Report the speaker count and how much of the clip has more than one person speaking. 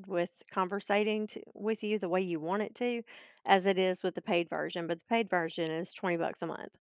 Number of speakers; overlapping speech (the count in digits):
1, no overlap